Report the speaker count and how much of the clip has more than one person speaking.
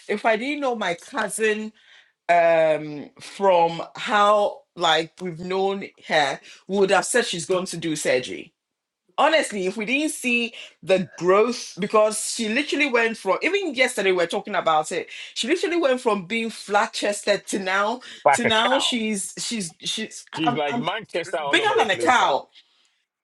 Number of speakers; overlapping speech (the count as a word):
two, about 9%